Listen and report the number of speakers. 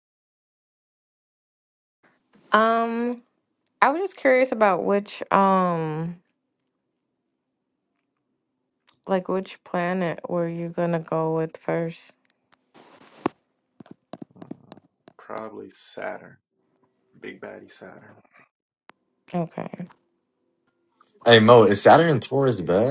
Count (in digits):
3